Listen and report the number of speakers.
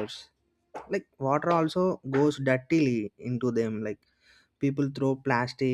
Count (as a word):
one